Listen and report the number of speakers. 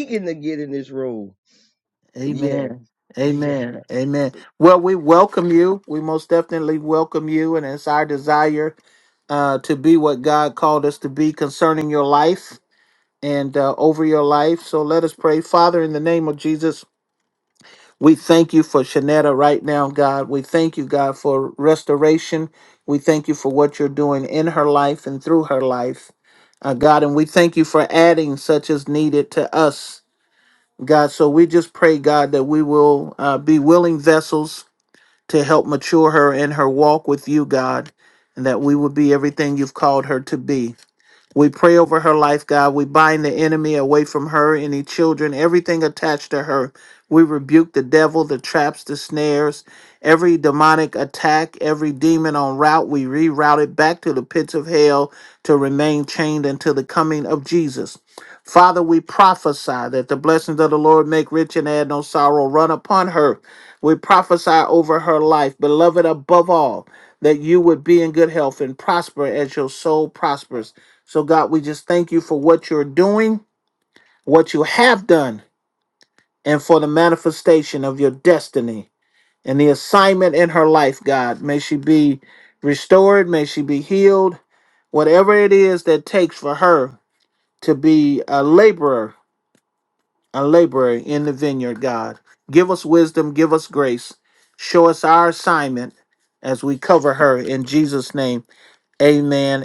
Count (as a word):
two